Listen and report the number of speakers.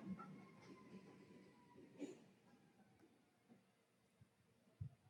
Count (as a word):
zero